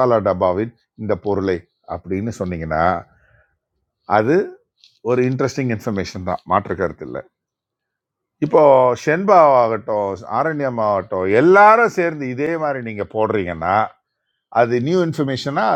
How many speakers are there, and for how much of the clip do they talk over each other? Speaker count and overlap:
1, no overlap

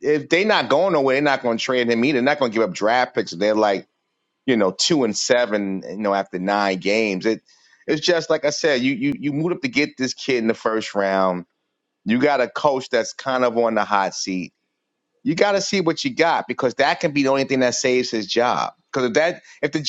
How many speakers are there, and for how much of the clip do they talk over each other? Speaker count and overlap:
1, no overlap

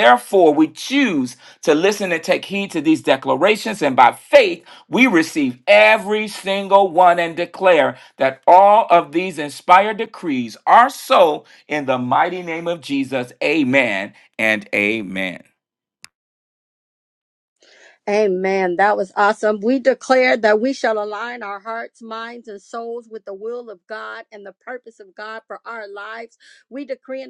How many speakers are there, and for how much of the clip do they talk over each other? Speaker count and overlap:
2, no overlap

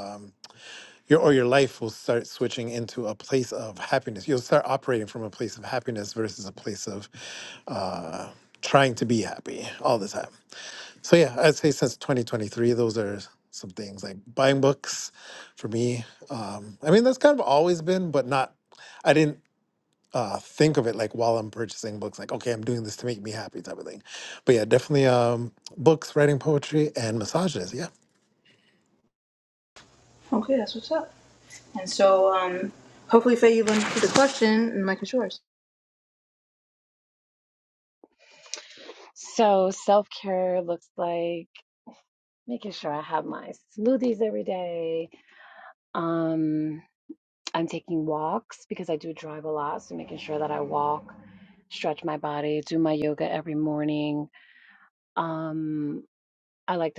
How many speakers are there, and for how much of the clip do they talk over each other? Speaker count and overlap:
3, no overlap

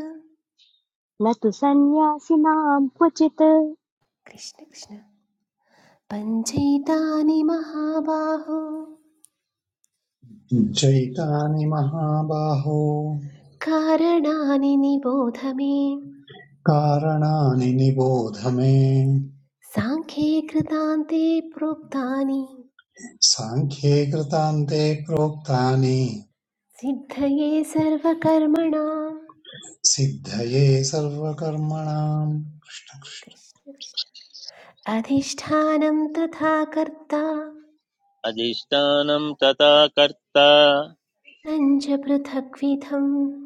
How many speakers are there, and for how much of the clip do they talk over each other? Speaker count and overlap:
4, no overlap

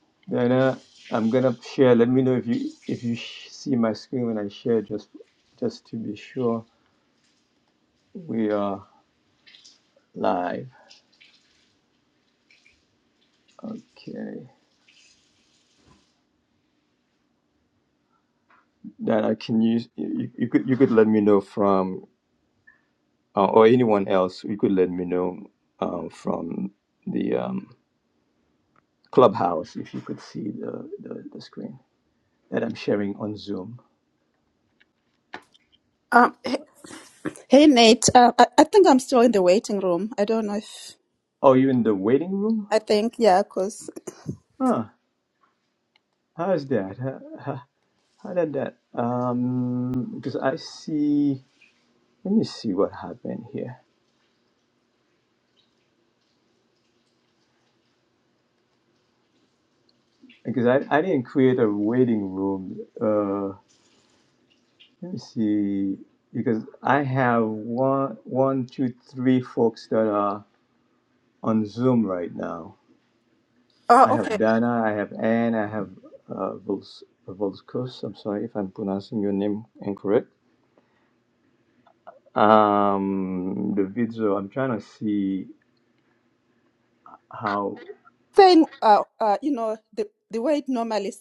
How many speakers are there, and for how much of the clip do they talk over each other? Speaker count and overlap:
2, under 1%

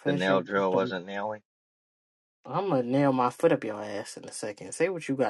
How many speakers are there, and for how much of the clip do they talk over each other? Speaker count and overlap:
2, about 6%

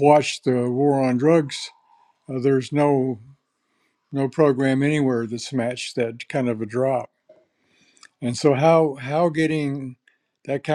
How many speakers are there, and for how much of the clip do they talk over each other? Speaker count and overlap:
1, no overlap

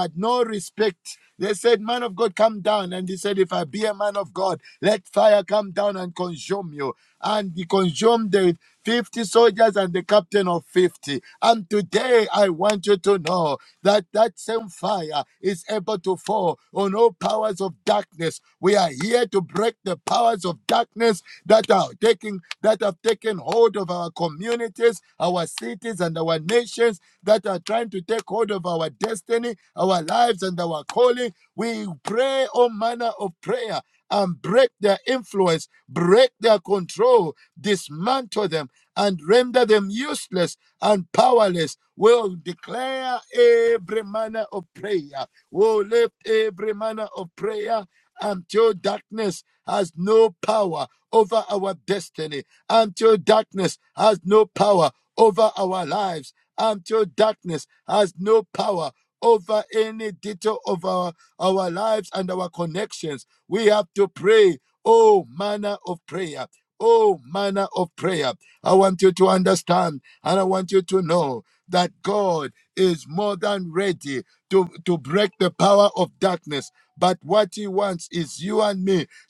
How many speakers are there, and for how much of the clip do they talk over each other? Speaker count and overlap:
1, no overlap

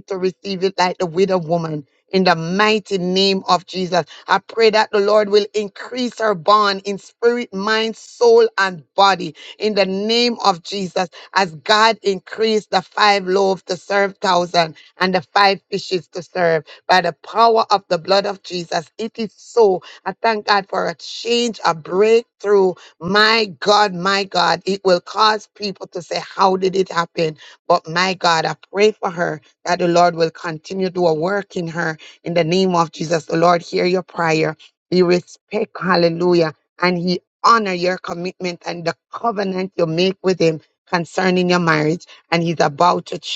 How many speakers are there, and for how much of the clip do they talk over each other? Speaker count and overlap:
1, no overlap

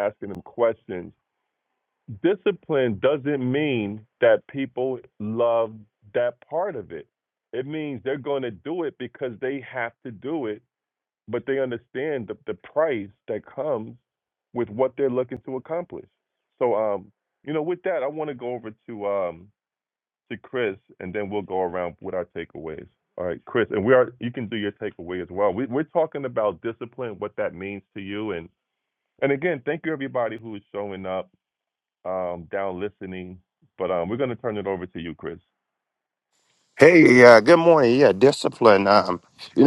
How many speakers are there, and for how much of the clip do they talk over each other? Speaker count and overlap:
2, no overlap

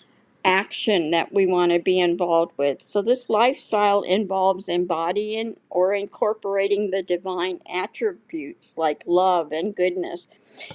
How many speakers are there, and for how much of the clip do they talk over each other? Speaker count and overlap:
1, no overlap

